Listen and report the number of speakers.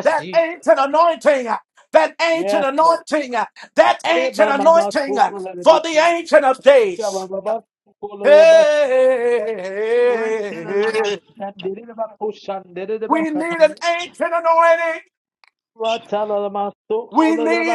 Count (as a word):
two